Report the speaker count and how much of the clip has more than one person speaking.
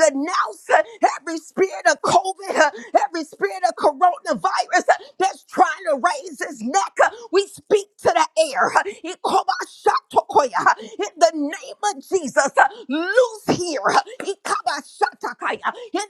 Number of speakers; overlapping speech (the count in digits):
1, no overlap